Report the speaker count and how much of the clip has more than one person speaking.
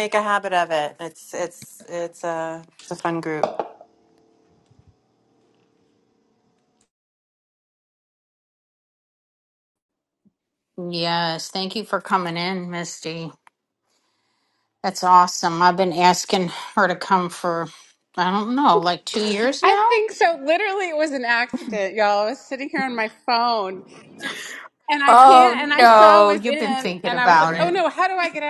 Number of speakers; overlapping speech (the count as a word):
three, about 11%